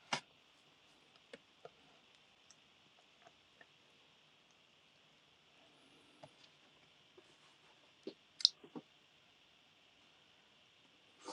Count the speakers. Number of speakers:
0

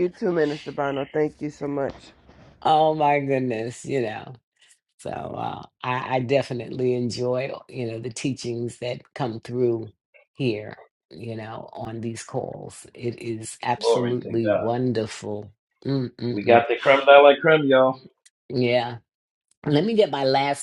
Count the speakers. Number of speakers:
3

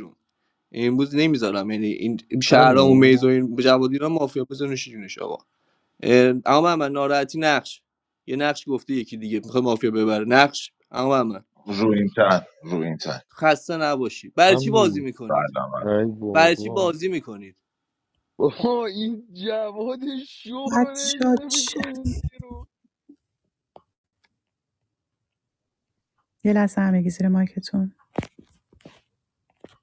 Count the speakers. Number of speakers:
4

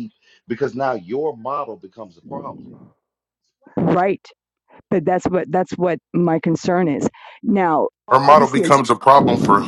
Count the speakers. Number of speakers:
3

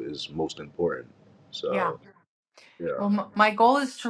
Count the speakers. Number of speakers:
2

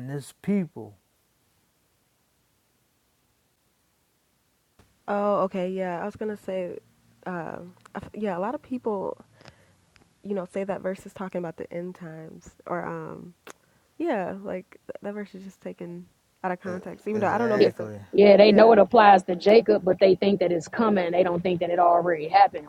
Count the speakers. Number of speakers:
3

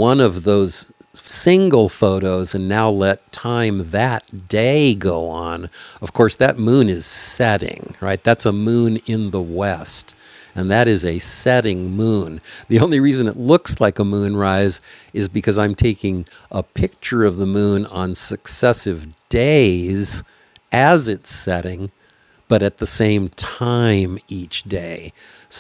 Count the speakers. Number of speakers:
1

